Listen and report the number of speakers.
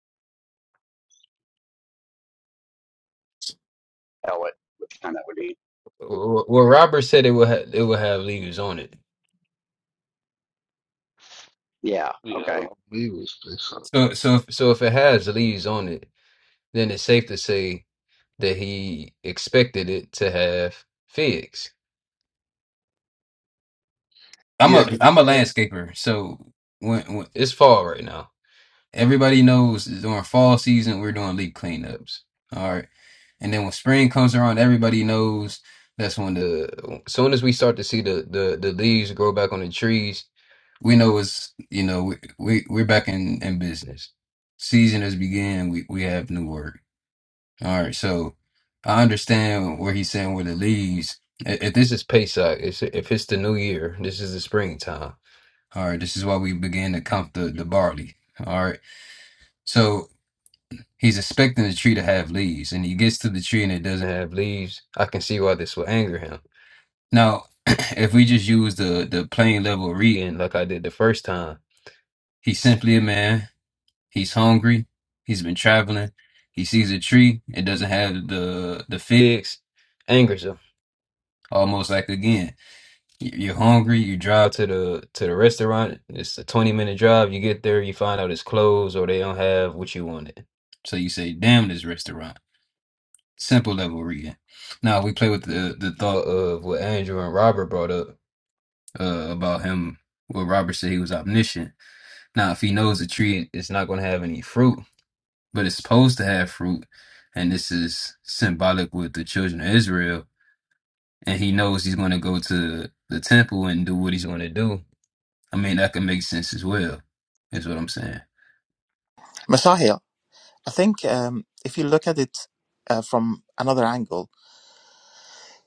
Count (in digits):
4